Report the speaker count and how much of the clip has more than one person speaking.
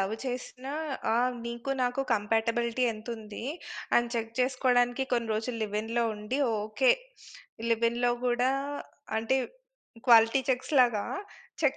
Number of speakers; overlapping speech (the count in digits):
1, no overlap